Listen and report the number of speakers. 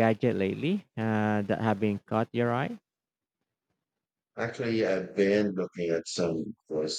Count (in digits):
2